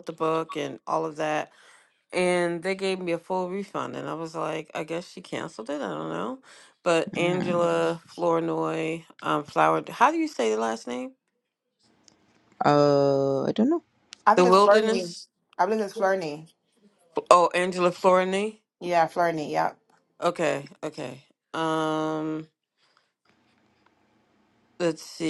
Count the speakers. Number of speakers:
three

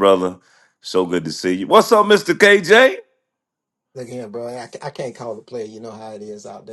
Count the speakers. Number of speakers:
two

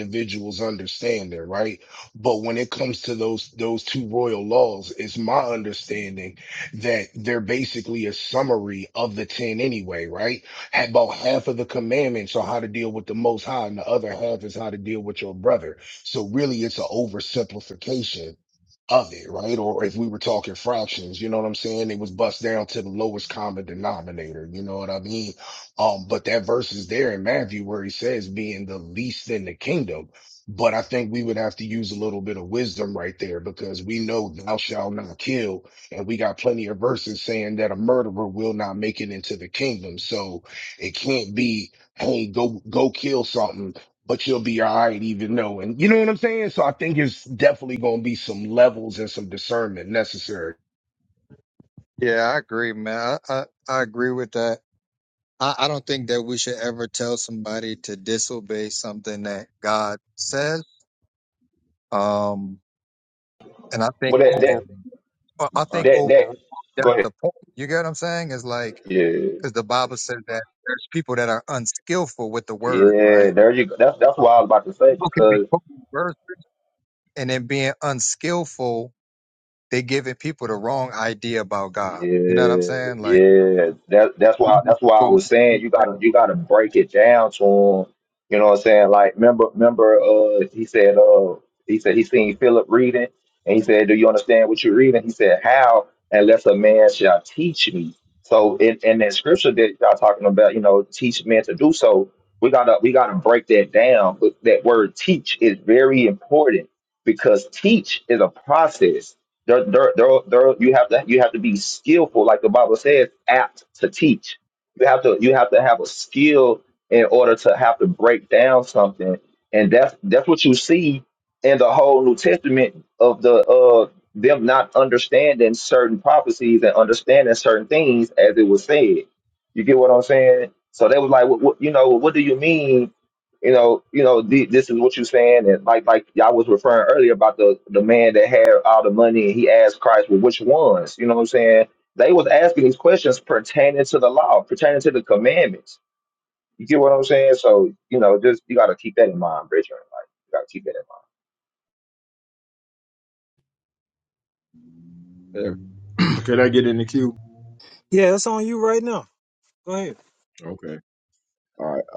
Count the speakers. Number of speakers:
five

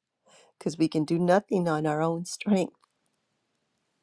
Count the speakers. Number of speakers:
one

